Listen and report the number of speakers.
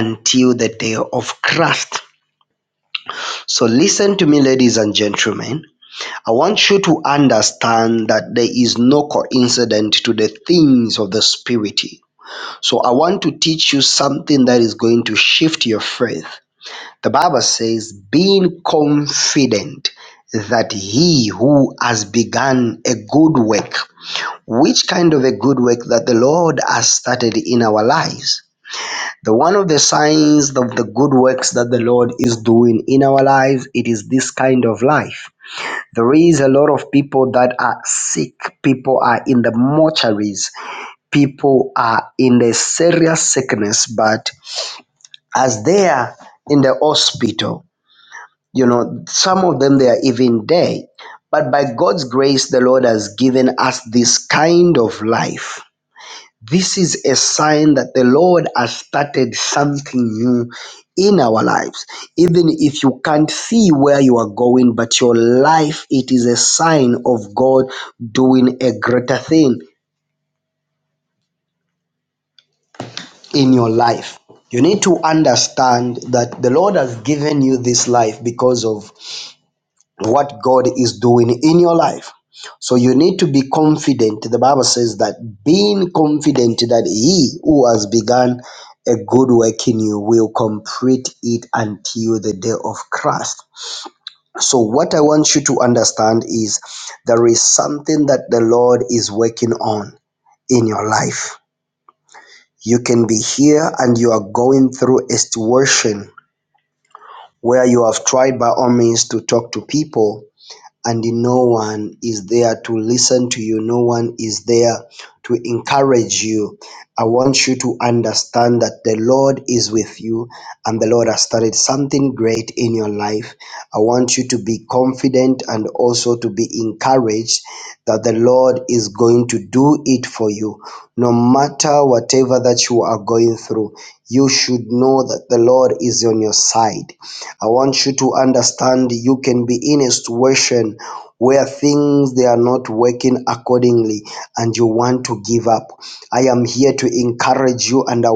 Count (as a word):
one